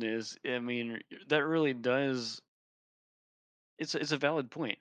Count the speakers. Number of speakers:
one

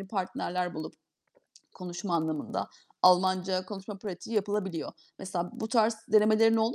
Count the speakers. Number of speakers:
one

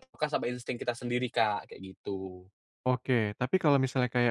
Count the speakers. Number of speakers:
two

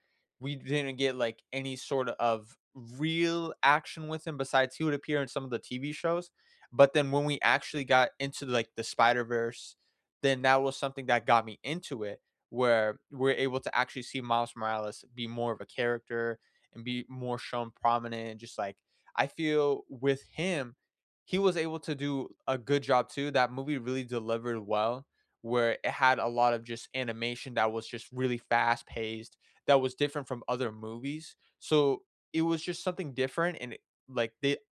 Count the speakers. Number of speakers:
one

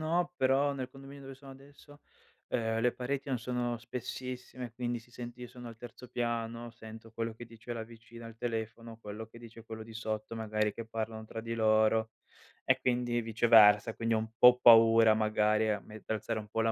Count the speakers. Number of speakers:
one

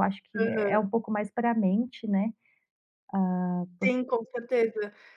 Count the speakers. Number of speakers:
two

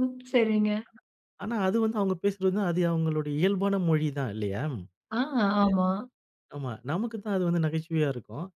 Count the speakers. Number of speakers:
two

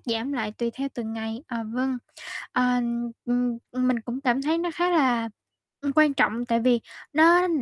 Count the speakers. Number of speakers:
one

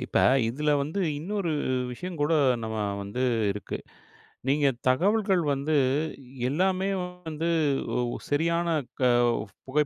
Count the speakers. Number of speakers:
one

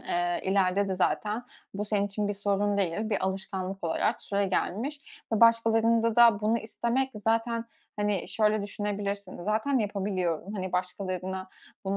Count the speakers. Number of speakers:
one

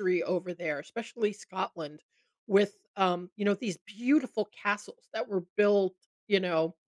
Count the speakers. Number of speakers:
one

